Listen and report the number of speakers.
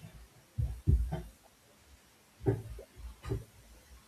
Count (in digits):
0